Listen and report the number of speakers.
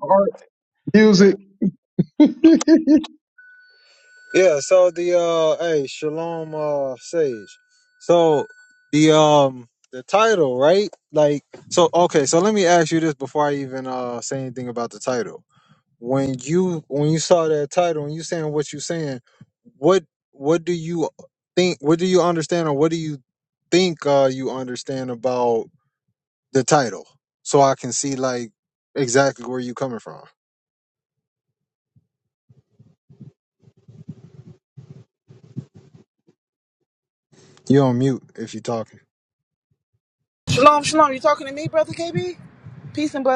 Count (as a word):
three